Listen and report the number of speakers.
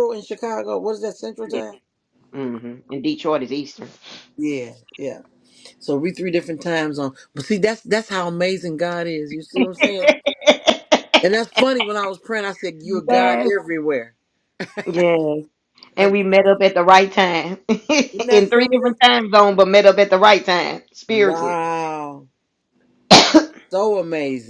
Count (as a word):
two